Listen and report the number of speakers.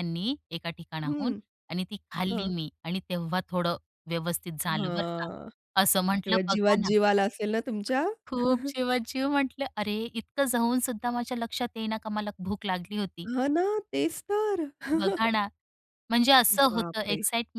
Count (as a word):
two